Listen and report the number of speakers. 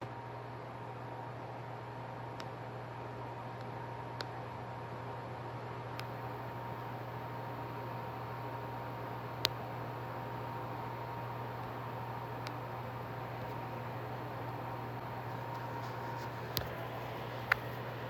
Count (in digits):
0